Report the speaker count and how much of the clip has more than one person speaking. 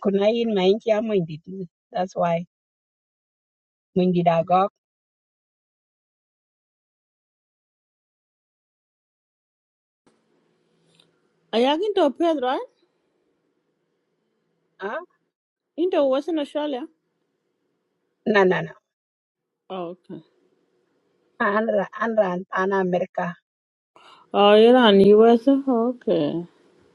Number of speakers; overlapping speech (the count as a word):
two, no overlap